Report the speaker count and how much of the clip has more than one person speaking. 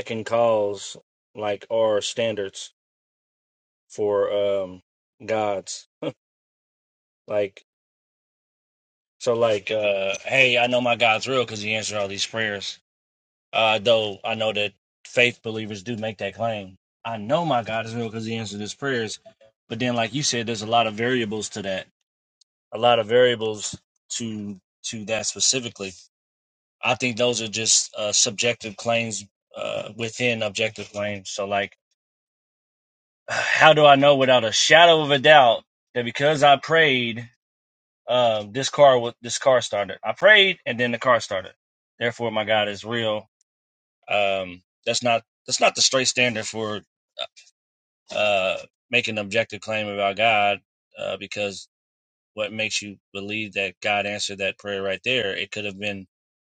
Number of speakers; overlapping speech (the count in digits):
1, no overlap